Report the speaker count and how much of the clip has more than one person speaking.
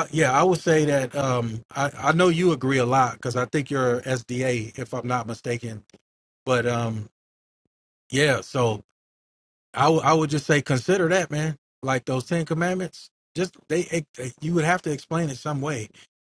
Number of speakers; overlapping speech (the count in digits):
1, no overlap